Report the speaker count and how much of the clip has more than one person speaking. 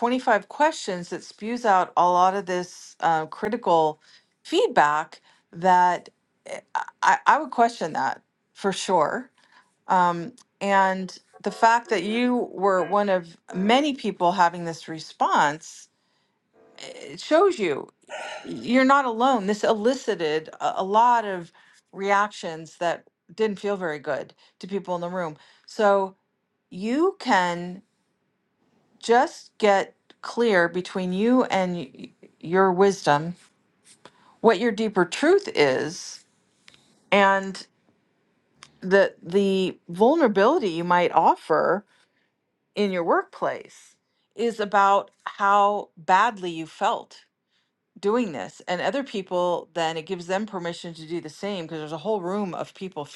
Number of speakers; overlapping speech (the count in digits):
1, no overlap